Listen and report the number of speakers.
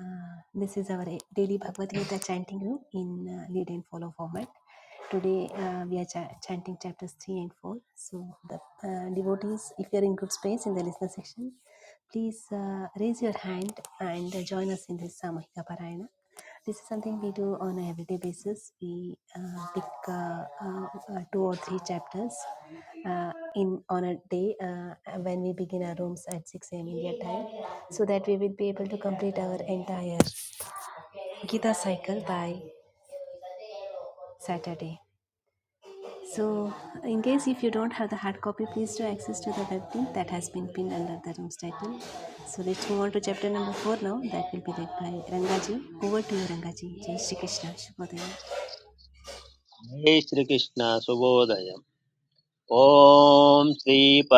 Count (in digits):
2